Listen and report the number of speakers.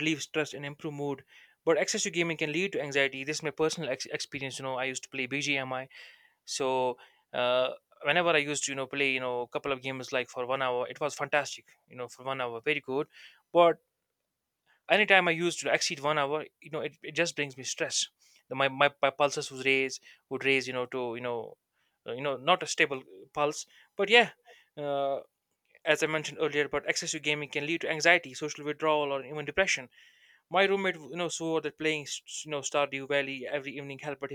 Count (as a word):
one